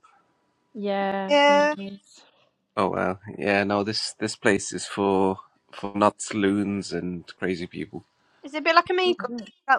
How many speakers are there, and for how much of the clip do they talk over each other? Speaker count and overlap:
three, about 6%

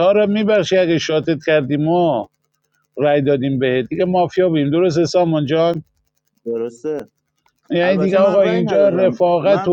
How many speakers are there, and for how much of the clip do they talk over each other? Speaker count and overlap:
two, about 20%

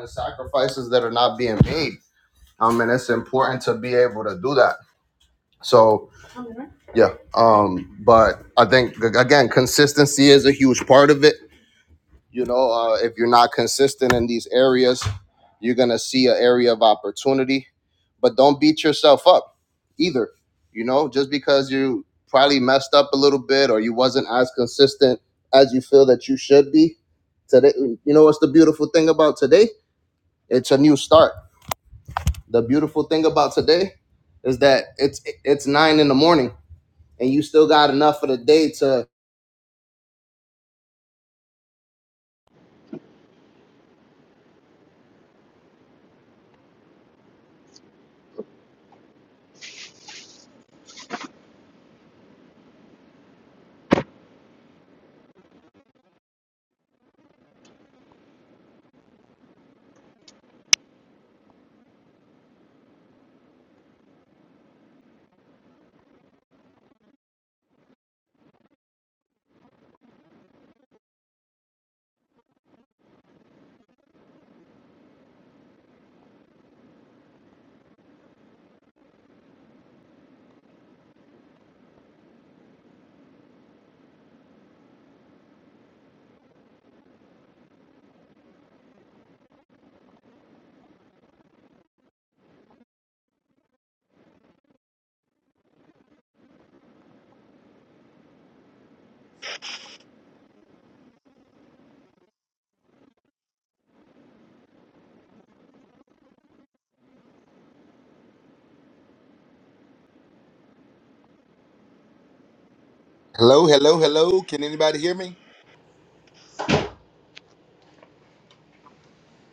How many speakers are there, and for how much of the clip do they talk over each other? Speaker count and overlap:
two, no overlap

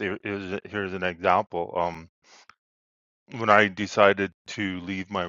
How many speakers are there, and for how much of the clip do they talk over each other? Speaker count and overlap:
one, no overlap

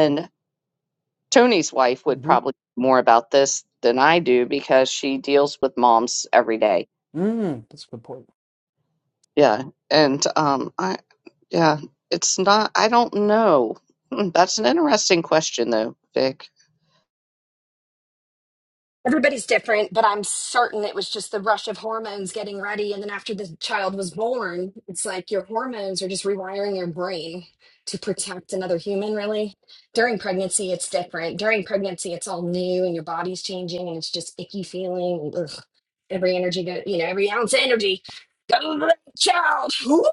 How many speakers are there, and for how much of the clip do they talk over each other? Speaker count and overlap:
three, about 1%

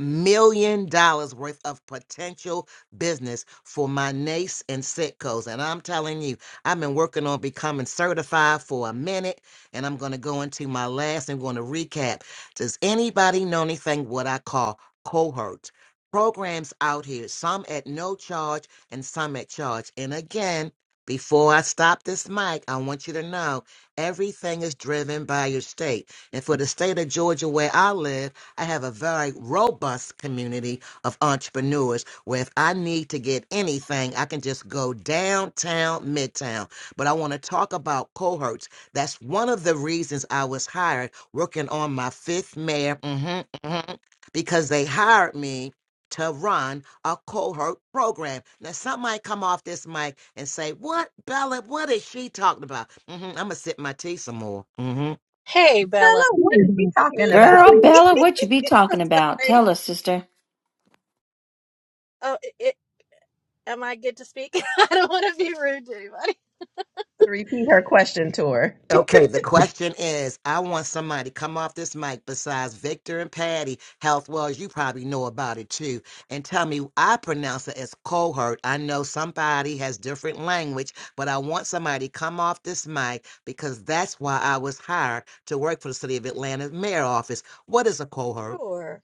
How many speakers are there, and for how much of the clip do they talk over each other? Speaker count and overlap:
four, about 2%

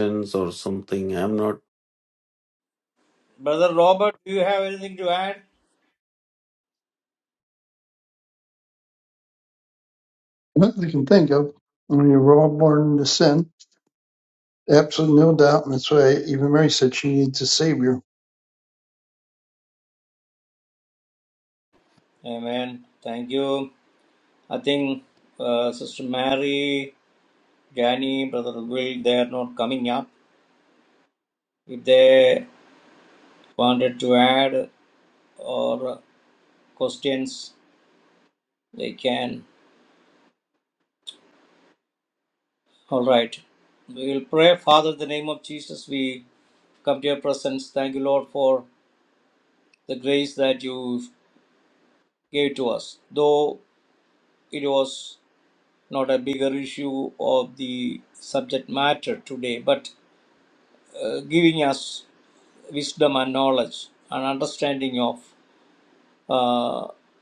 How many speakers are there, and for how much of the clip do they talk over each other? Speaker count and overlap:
three, no overlap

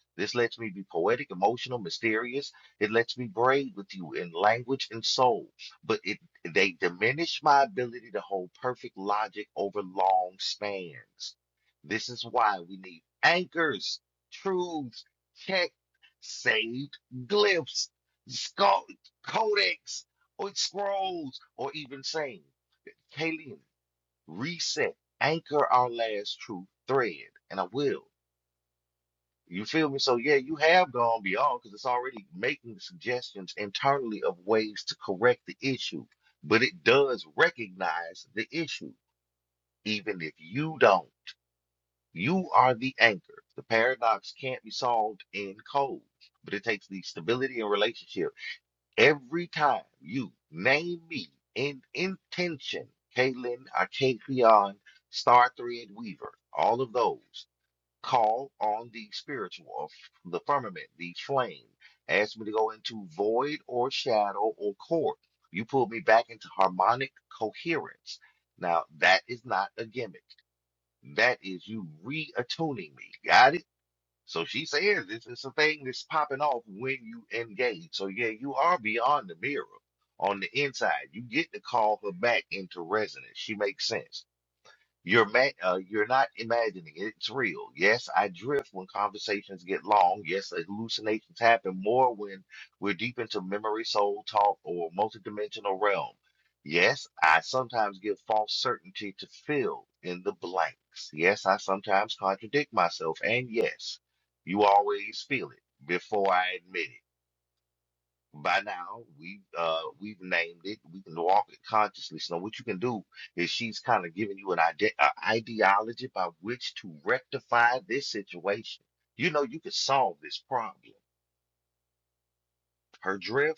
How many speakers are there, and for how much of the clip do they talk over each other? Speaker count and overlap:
one, no overlap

